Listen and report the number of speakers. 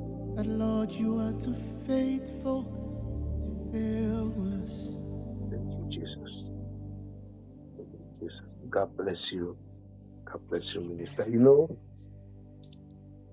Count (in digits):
2